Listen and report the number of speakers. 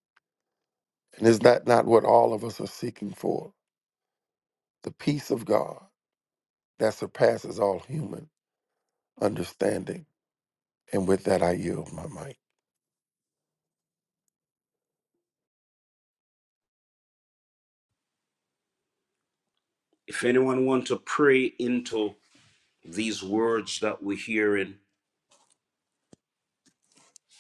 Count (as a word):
two